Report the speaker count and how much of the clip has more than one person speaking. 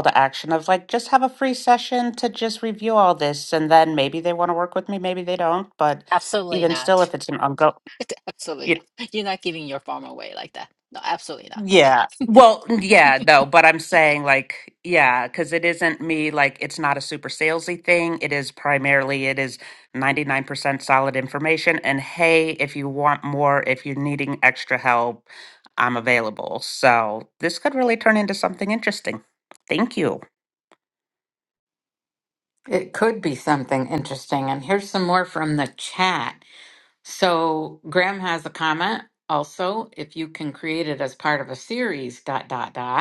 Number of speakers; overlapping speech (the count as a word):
three, about 1%